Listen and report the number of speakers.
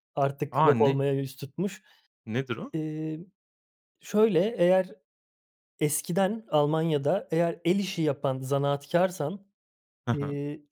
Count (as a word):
two